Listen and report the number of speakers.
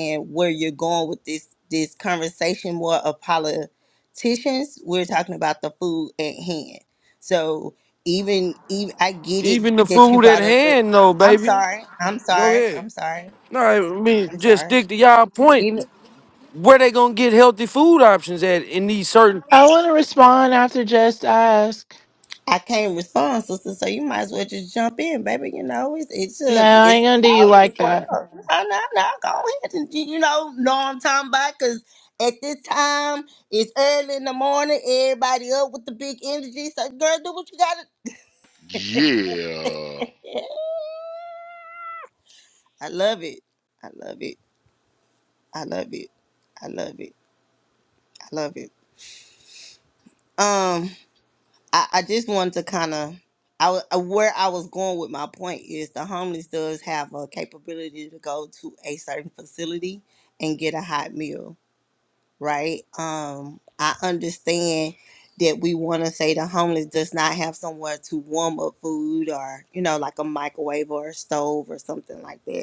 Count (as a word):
four